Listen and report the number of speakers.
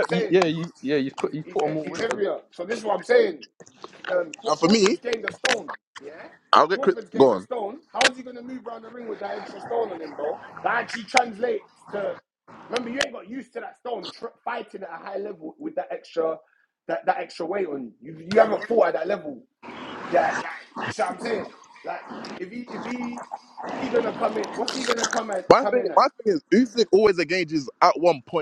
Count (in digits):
3